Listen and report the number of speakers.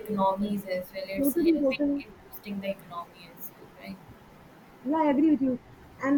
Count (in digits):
2